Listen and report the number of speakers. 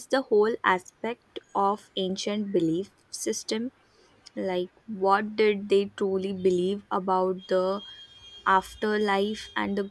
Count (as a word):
one